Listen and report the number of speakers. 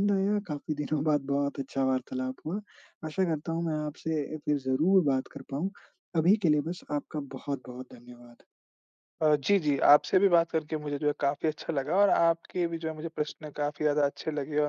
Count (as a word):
two